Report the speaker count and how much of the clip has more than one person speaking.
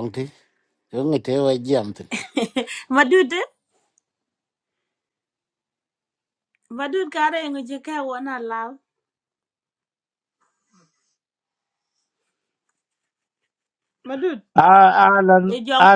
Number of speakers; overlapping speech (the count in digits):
3, about 3%